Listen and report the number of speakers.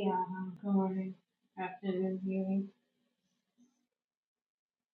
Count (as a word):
one